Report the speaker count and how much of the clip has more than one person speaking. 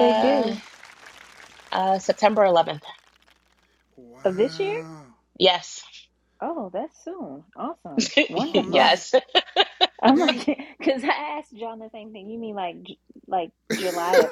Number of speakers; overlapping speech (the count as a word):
three, about 15%